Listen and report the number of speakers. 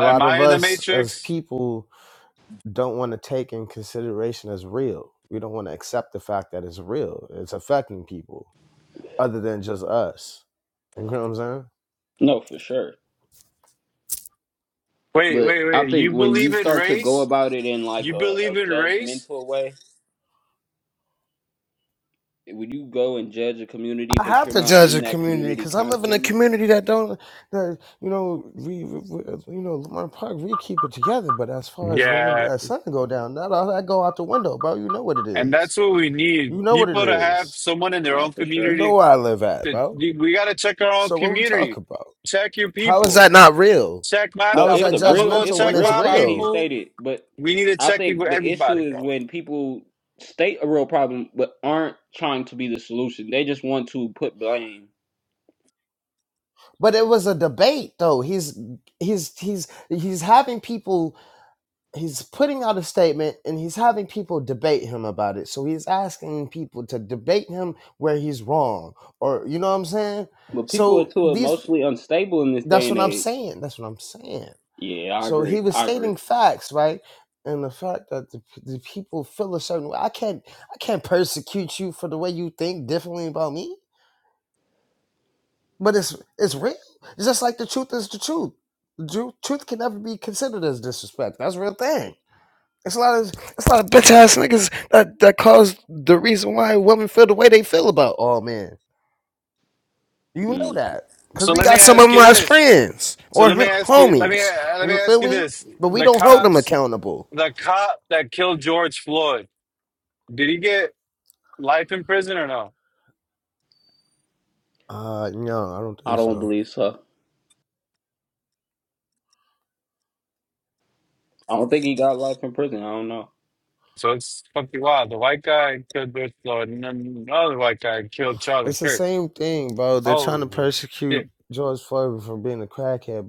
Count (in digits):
3